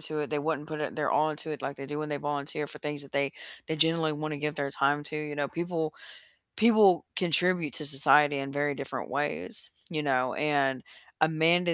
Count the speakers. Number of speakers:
one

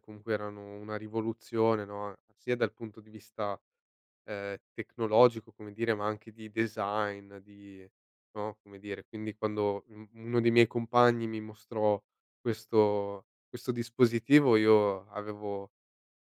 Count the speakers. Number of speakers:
one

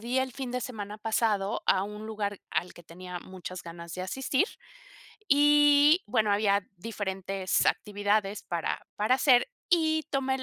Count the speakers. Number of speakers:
one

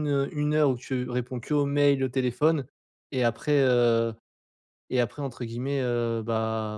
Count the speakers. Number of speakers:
one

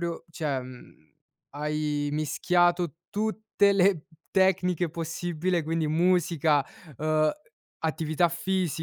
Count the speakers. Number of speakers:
one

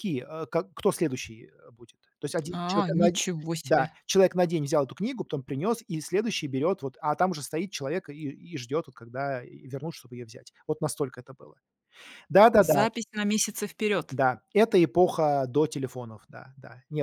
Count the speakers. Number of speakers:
two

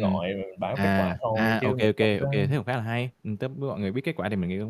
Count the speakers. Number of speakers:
two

